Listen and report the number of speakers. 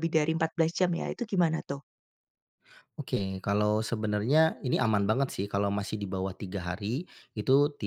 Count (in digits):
2